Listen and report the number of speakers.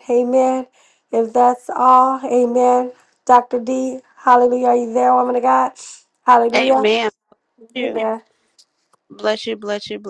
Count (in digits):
2